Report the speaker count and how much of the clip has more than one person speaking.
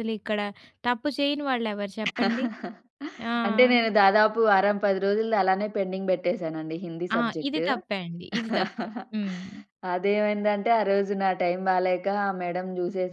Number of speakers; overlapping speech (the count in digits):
2, about 4%